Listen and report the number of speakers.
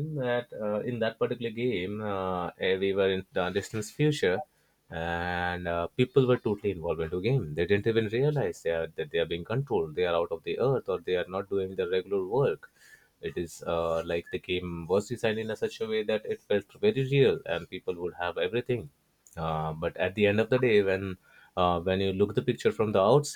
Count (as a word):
one